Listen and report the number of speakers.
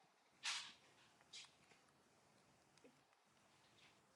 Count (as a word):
zero